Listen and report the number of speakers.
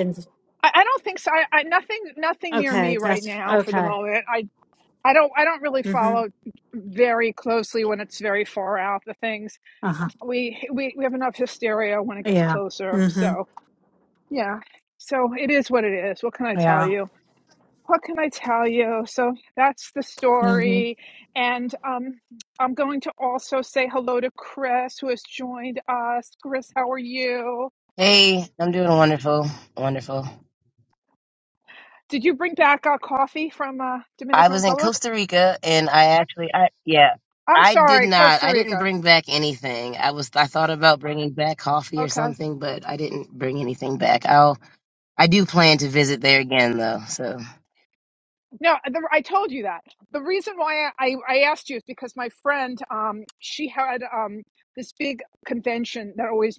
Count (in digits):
3